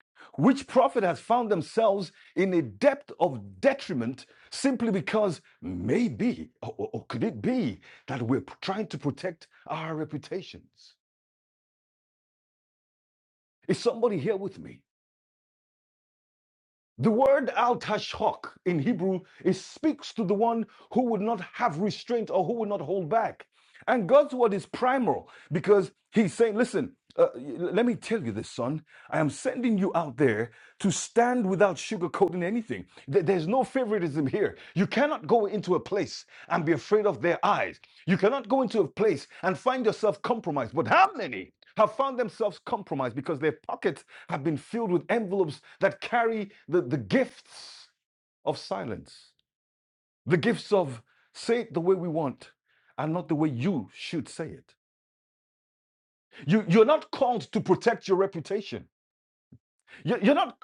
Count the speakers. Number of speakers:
one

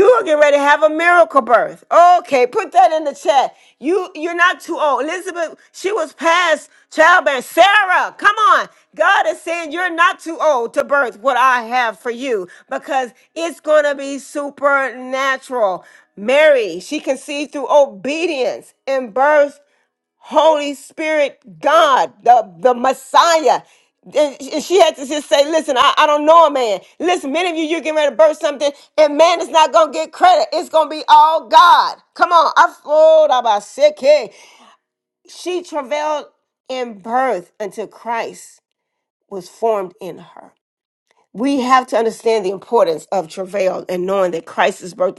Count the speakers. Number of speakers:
one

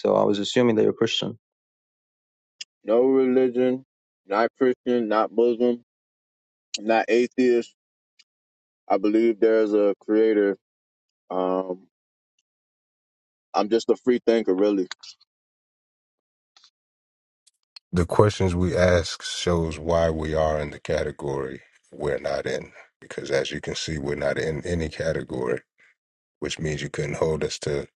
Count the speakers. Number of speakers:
three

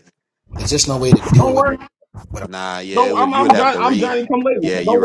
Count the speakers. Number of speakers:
three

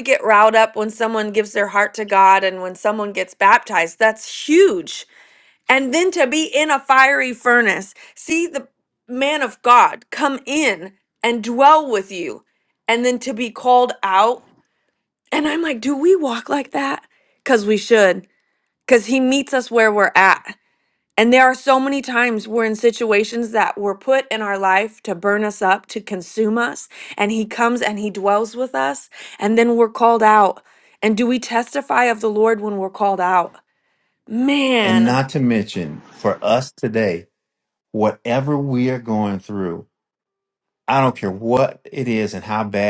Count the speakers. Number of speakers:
two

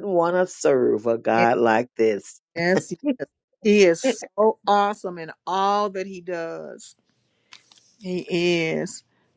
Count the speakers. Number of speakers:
two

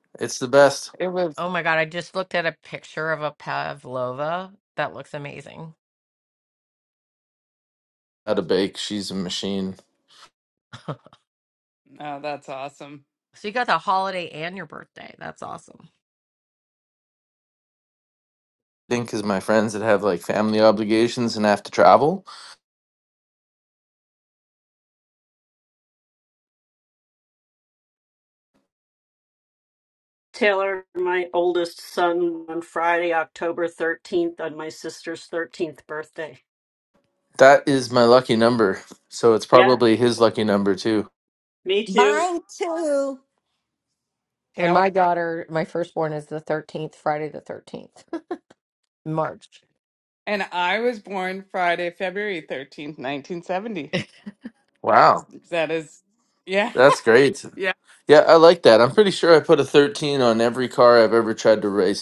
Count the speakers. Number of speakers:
five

